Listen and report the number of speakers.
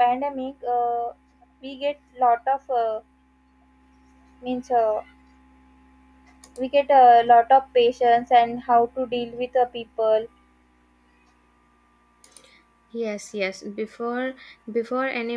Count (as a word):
two